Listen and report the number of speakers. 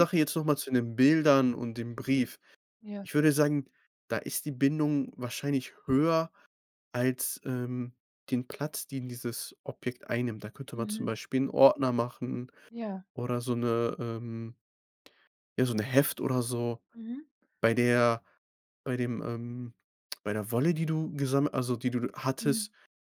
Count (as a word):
two